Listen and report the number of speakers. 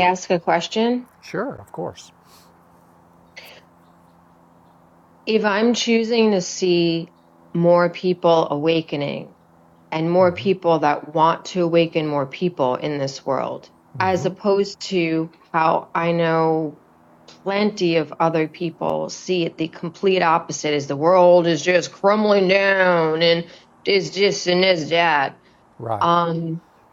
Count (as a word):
two